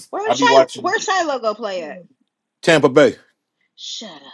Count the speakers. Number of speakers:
2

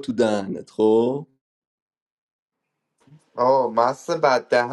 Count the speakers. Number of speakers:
2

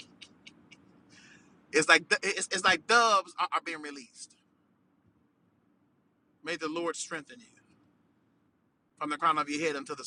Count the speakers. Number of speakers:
1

